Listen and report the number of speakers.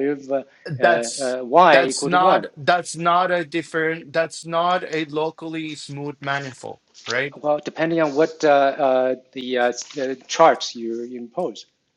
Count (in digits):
2